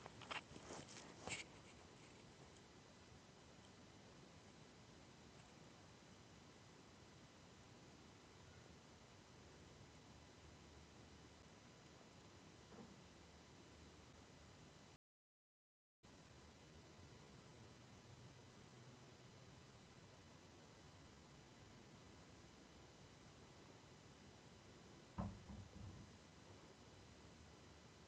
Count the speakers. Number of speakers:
0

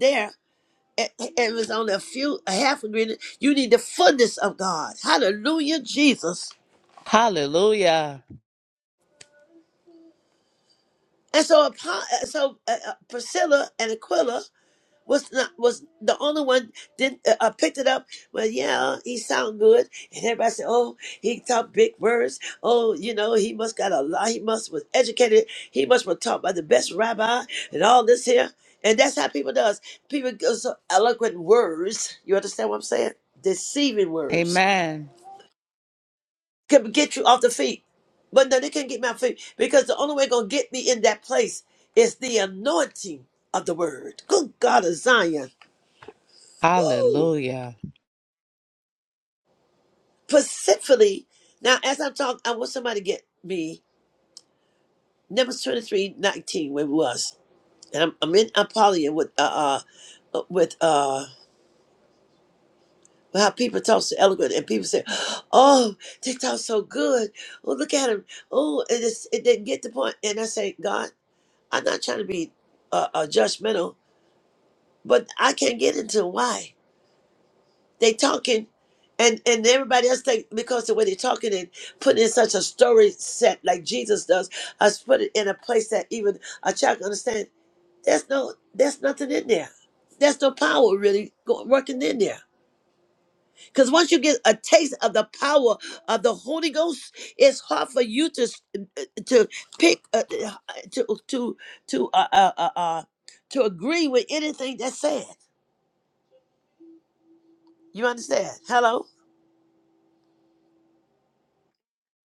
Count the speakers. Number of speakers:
2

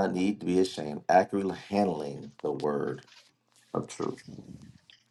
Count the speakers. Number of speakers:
1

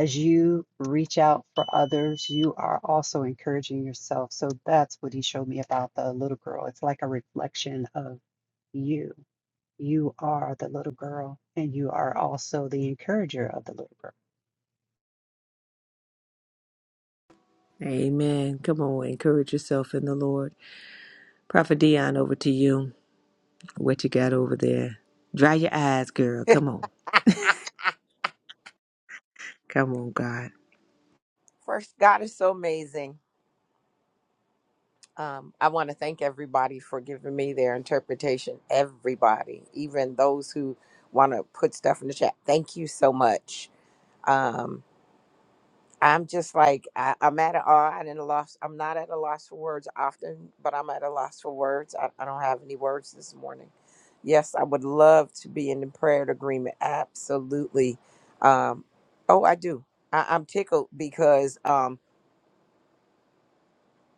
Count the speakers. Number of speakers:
3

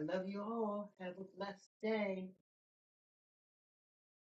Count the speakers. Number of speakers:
1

